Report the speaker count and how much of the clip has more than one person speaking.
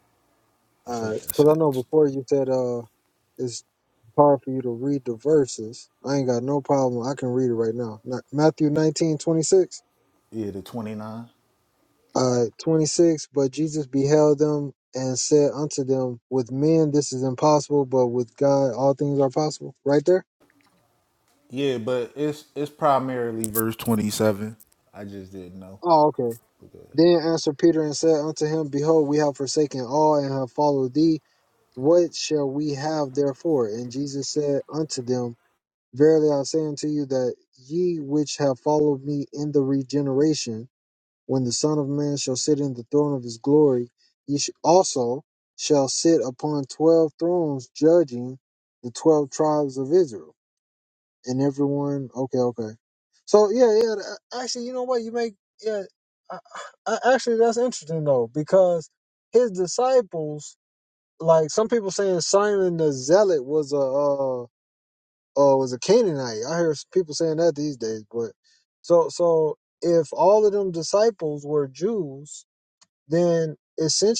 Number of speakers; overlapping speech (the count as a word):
two, about 1%